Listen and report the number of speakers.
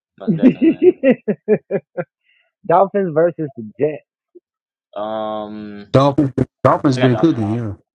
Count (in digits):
3